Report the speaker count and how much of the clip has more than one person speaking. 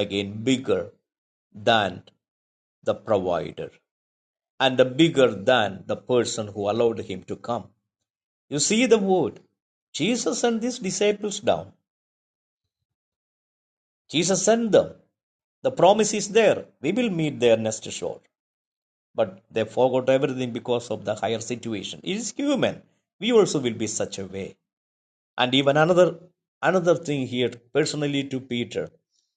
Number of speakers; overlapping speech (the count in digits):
1, no overlap